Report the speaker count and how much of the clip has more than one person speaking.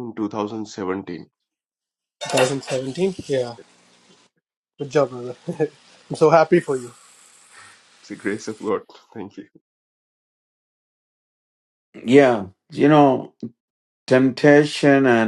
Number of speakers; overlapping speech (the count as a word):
three, no overlap